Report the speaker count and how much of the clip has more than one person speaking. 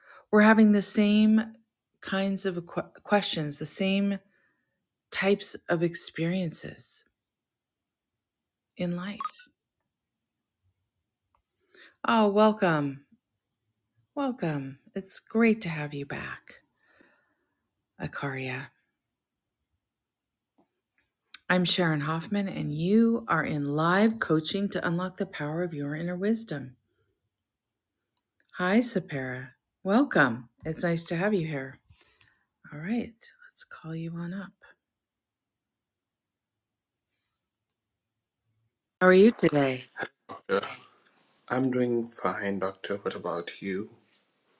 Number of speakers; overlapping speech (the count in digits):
2, no overlap